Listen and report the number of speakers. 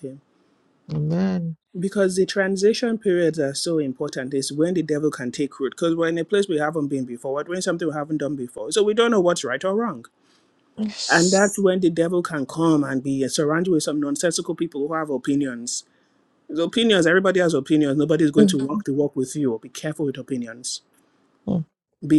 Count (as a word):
two